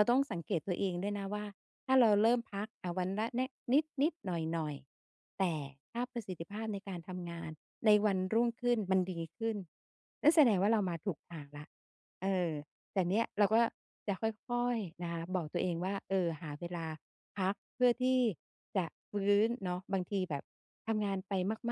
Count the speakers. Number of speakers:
one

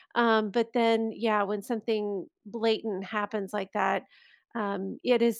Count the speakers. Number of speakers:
one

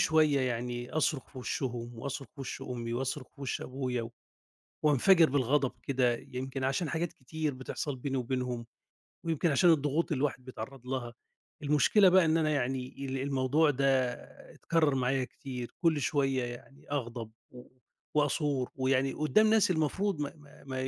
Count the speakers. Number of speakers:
one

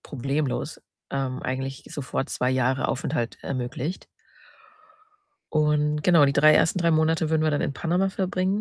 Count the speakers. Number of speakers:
one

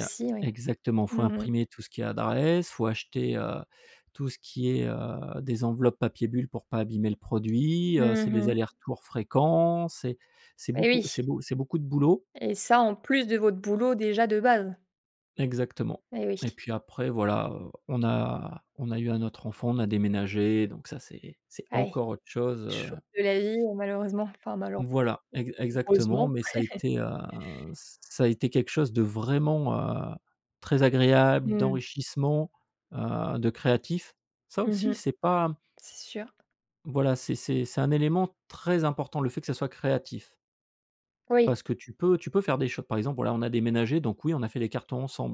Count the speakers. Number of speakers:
two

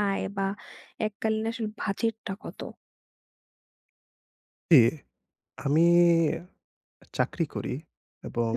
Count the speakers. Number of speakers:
two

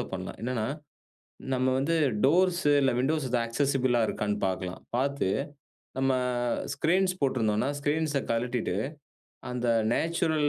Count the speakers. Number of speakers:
one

